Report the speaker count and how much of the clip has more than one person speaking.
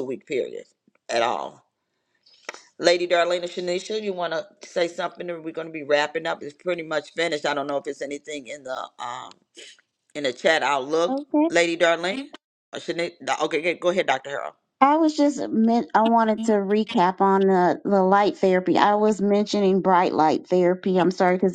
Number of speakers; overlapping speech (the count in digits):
2, under 1%